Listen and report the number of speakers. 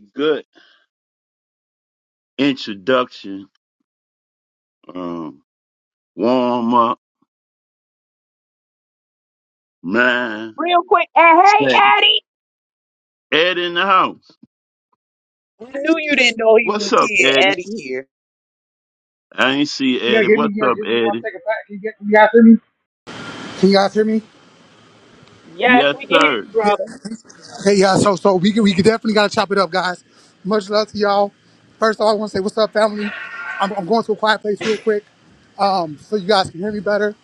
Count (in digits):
3